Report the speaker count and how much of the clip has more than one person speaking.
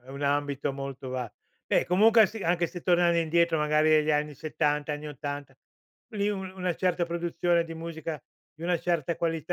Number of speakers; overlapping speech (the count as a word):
one, no overlap